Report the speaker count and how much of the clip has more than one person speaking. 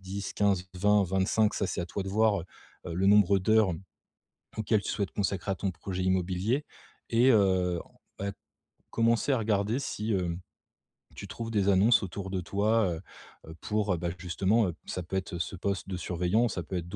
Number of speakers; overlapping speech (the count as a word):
one, no overlap